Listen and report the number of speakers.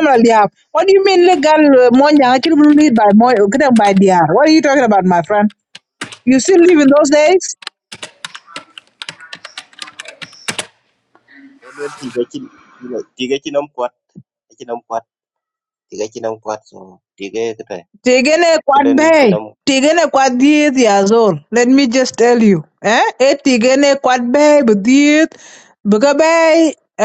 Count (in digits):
2